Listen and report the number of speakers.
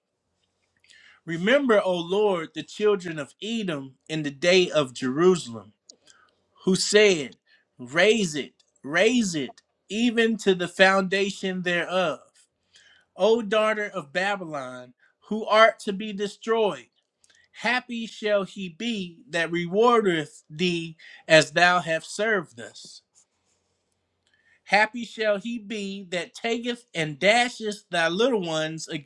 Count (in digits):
1